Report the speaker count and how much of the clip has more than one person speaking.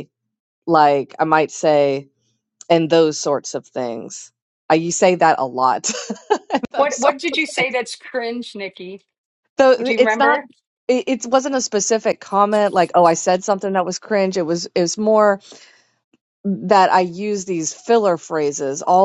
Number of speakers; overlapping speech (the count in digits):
2, about 8%